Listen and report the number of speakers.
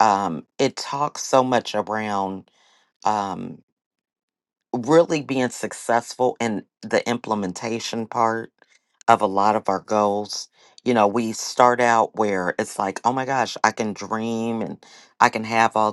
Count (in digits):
1